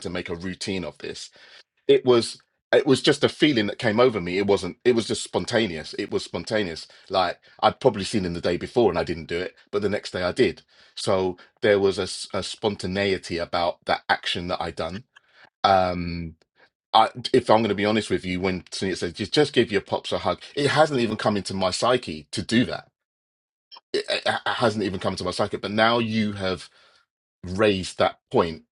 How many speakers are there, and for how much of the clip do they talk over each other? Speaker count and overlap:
one, no overlap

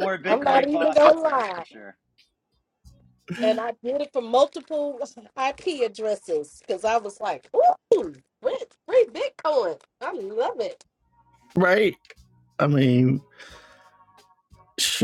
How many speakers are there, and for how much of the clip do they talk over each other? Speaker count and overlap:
three, about 9%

